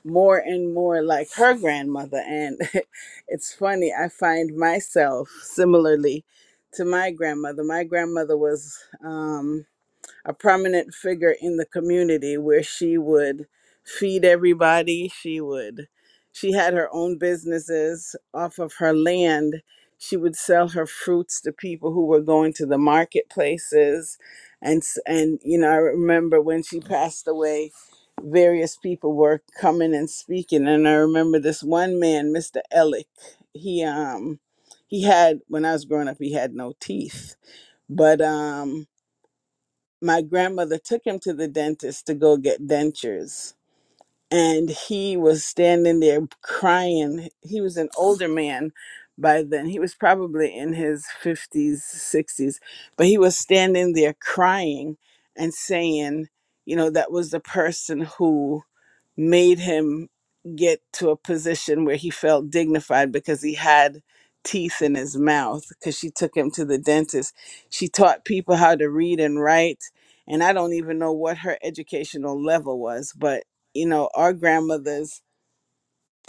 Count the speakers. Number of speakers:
1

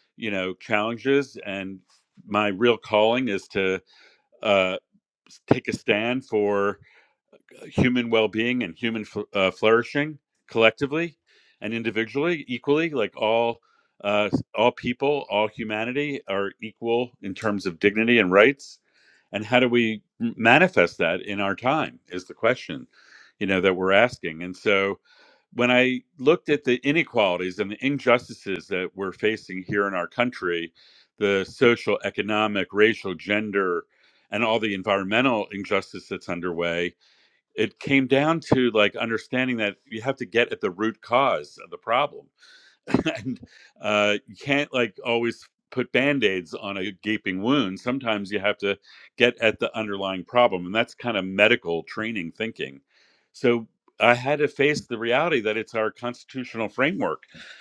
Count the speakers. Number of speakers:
1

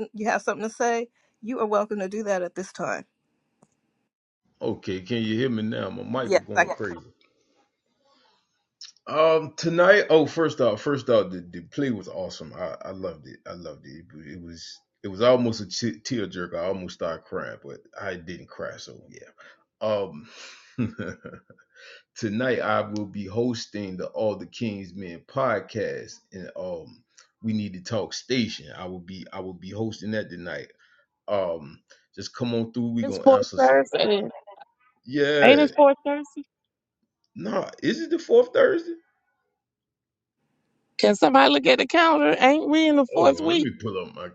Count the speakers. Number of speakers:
3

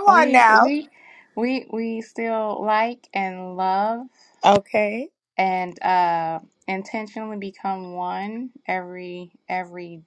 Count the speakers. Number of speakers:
2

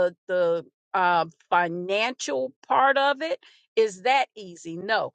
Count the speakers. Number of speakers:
1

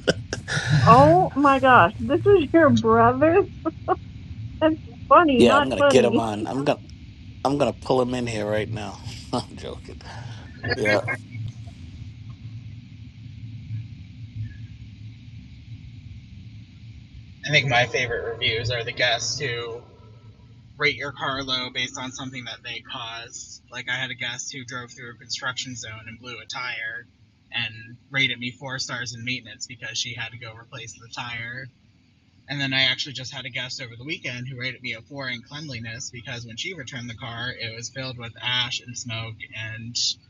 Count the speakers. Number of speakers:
3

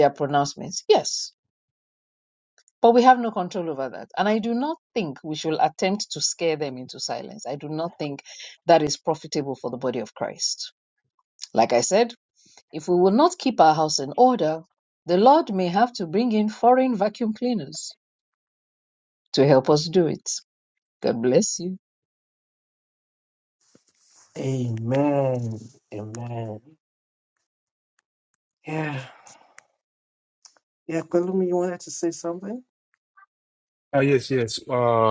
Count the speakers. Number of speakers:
3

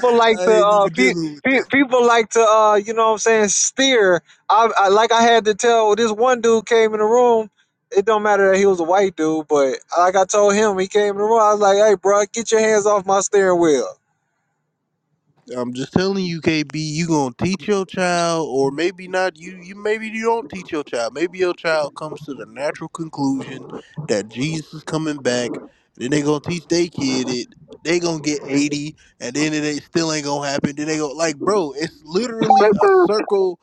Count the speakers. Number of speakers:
2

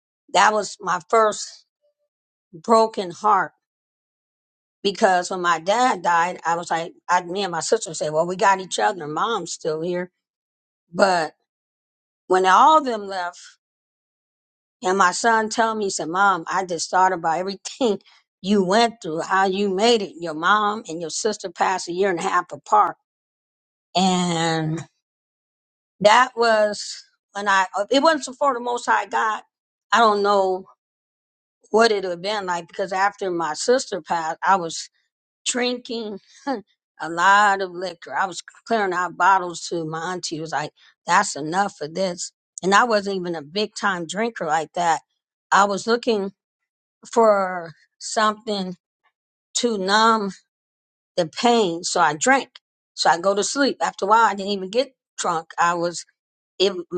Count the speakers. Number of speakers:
1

